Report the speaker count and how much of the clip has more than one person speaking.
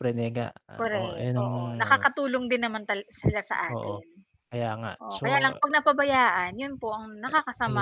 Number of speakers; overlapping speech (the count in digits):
2, about 27%